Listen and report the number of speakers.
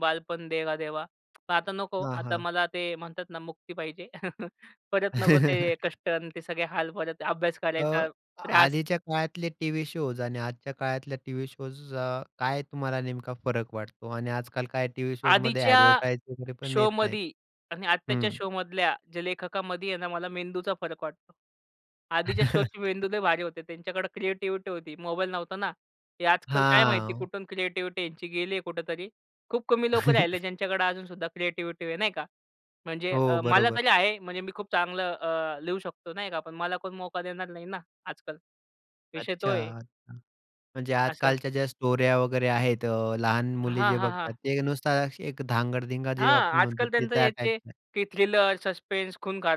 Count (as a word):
two